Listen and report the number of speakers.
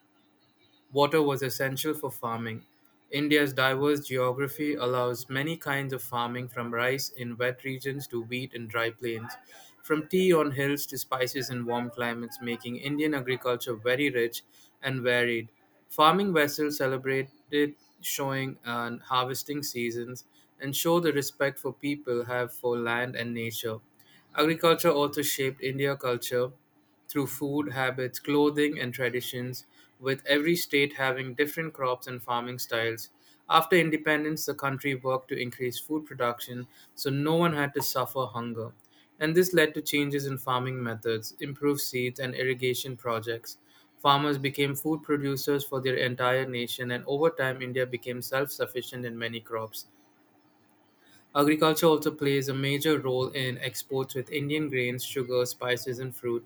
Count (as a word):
one